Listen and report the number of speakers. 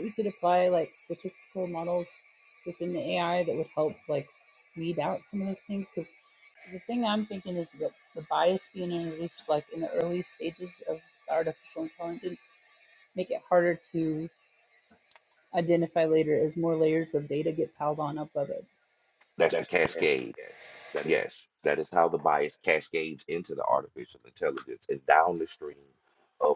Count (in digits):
2